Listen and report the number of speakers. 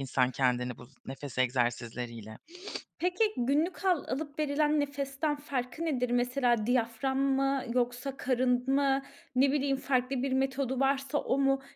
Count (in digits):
2